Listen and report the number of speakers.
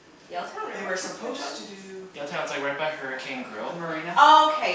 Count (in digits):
3